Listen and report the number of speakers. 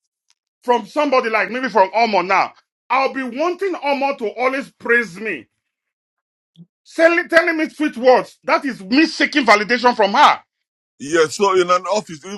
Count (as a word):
two